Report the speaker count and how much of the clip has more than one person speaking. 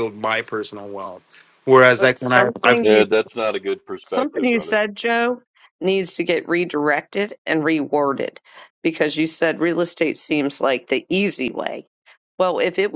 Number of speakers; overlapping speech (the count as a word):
three, about 13%